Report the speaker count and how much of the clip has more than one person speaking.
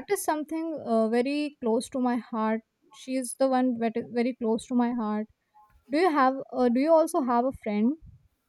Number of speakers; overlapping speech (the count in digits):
1, no overlap